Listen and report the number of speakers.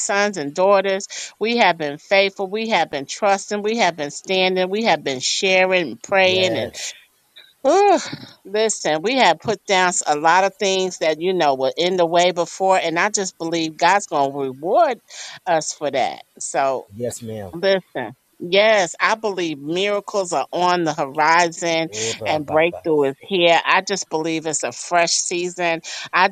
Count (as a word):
two